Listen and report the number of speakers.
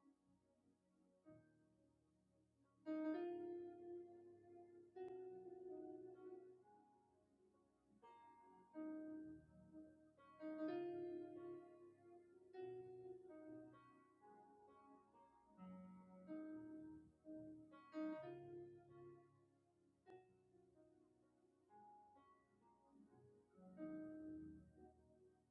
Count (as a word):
zero